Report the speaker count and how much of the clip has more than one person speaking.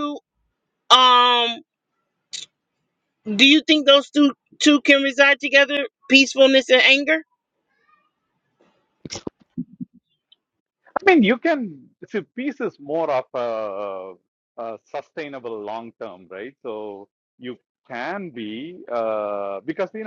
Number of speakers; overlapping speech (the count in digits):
2, no overlap